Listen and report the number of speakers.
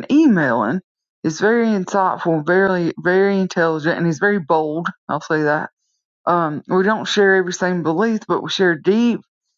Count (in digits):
1